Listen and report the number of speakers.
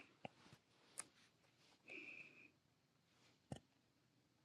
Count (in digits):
0